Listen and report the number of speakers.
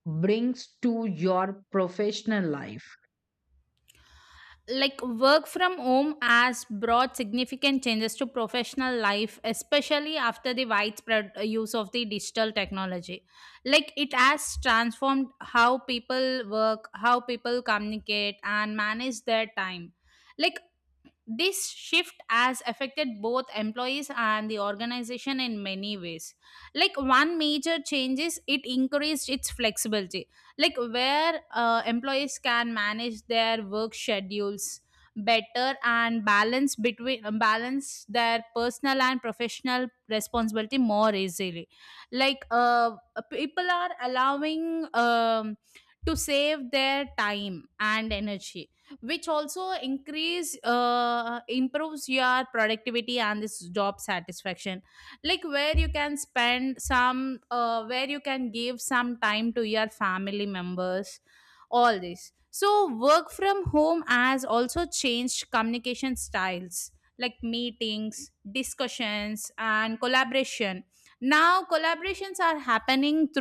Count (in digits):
2